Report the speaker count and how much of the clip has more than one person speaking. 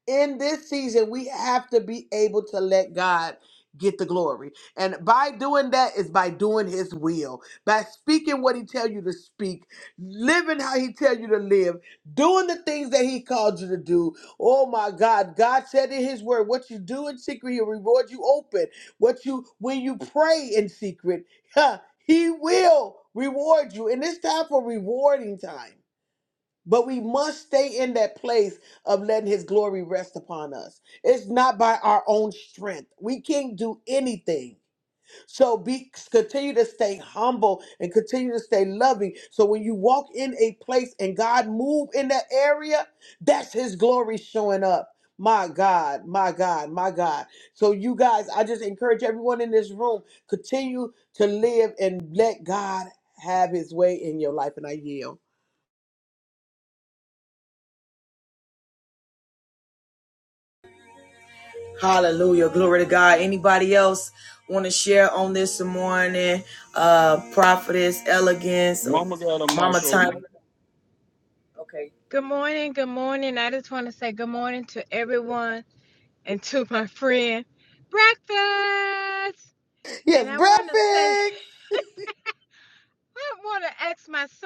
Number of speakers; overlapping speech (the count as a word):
four, about 2%